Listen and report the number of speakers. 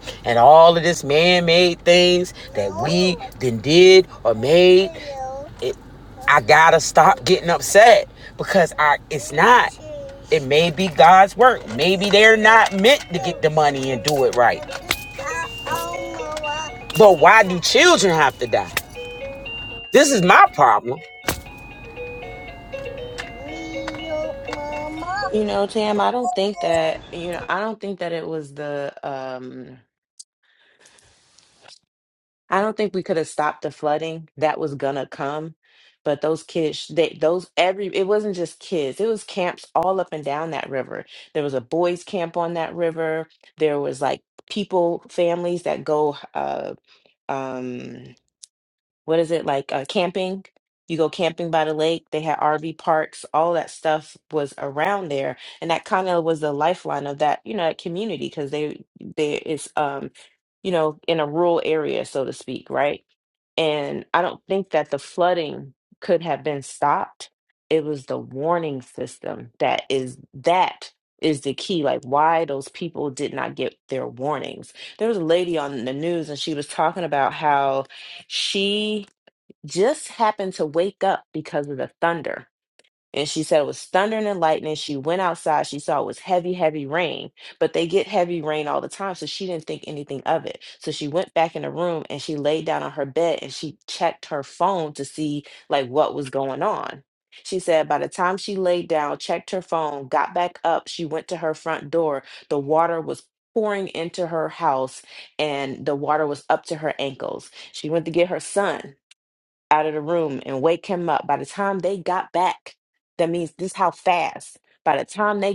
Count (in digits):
2